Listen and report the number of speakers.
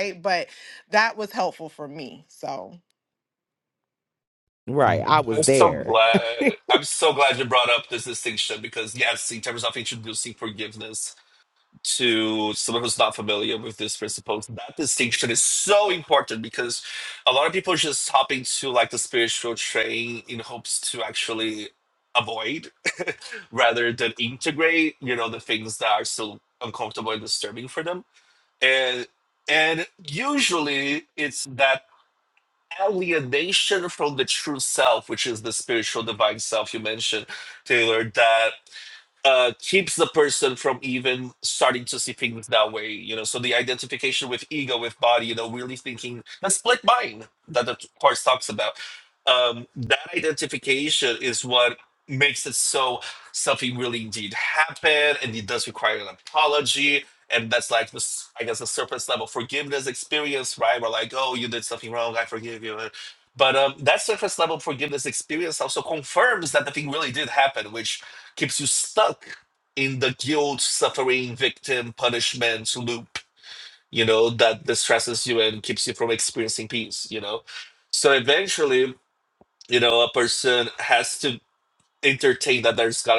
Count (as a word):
three